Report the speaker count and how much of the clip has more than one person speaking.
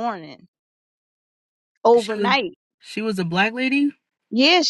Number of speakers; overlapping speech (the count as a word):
two, about 9%